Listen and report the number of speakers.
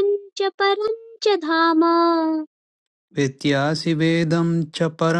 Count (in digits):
2